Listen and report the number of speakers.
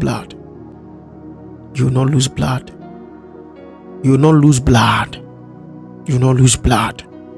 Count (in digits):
1